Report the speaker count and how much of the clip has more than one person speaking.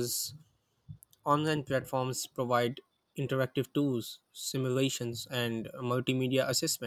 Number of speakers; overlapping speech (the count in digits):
1, no overlap